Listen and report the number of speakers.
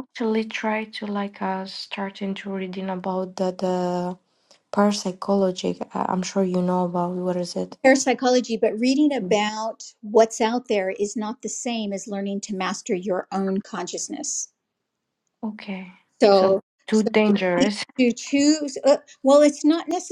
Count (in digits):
2